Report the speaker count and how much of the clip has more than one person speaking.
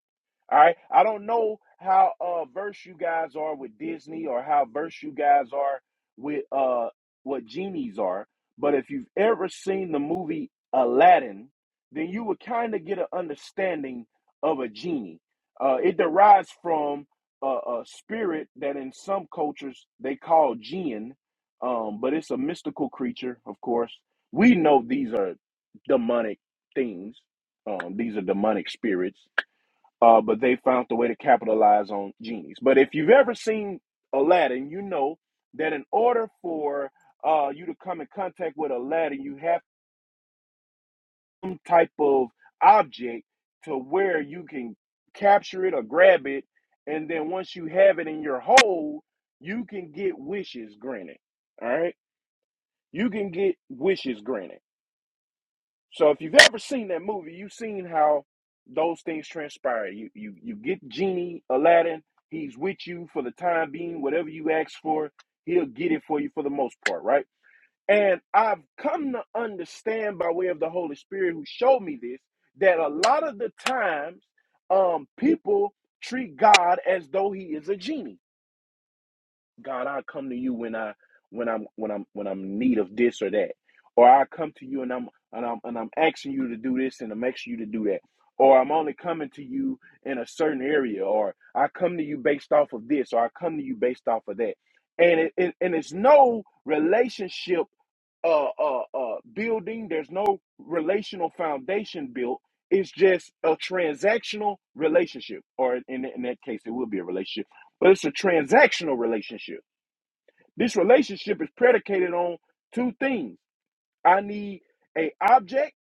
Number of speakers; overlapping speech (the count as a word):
one, no overlap